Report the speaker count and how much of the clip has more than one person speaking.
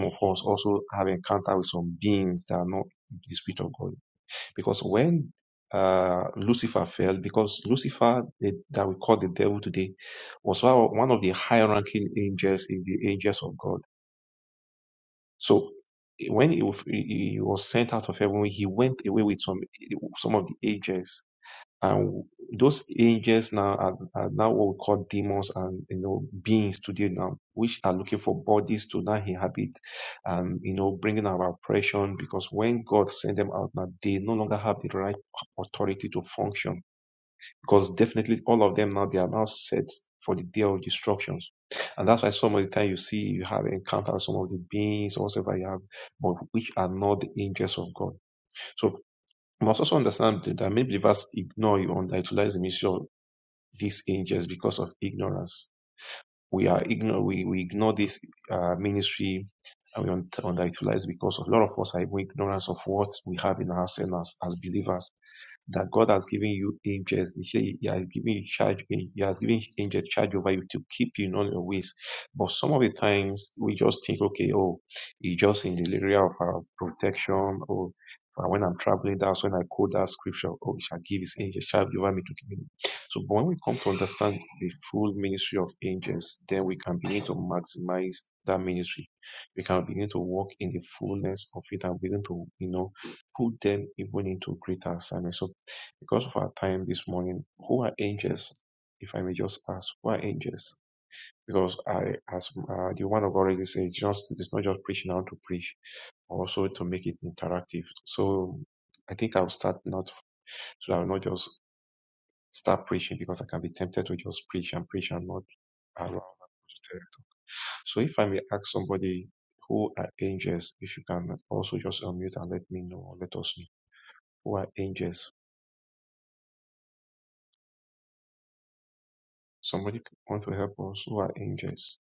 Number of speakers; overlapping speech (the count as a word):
one, no overlap